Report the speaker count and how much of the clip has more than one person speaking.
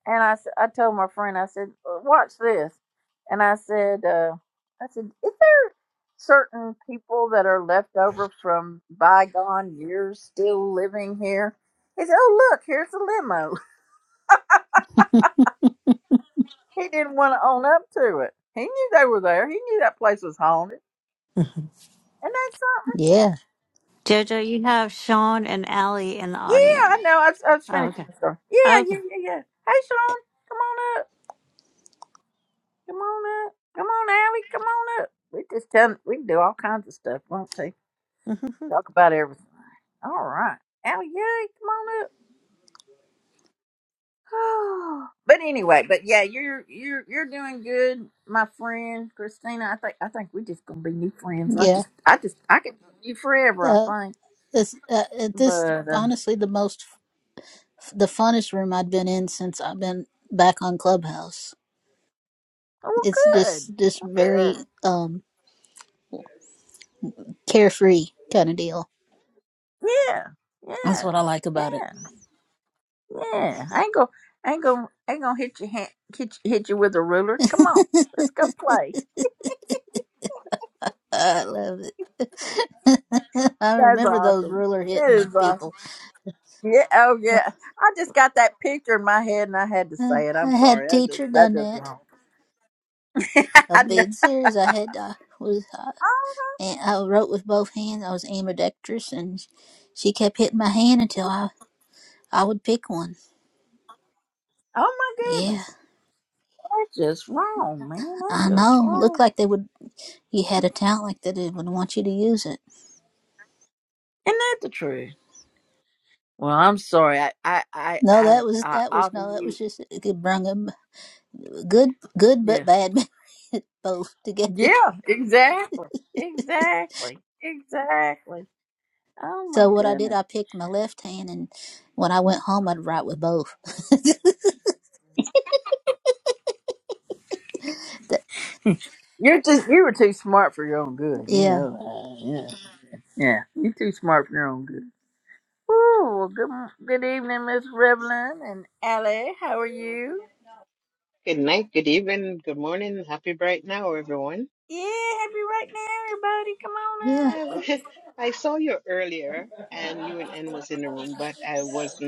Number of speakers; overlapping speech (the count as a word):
four, about 7%